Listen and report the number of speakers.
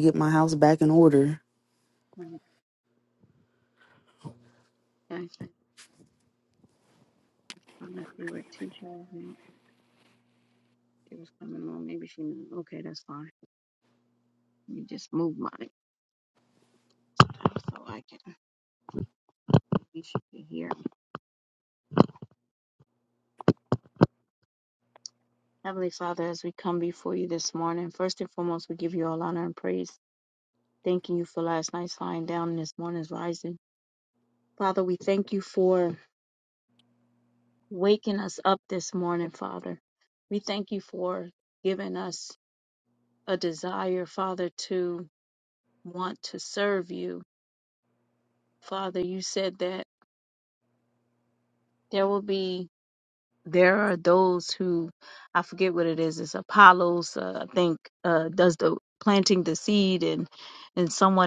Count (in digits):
2